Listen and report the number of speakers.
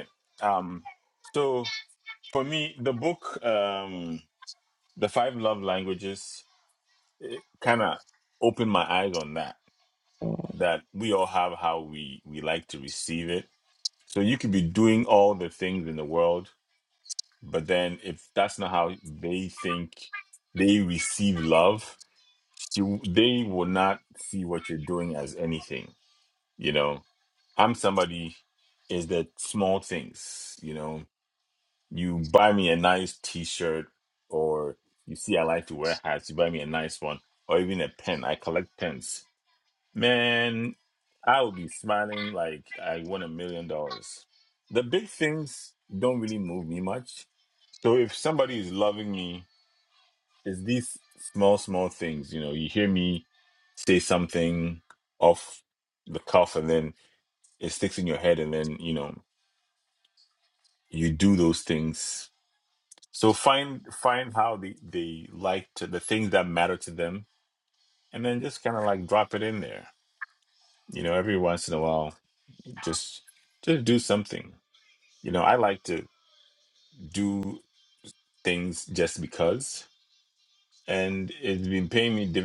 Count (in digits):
1